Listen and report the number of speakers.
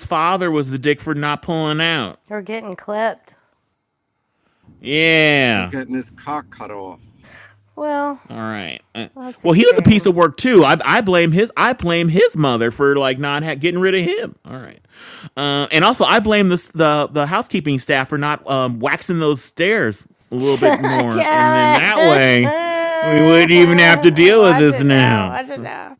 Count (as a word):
three